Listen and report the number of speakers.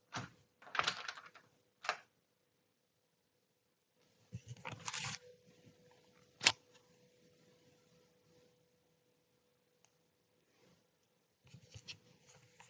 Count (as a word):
zero